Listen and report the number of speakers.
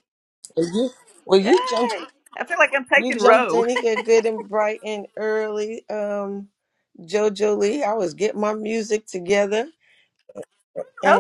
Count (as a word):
two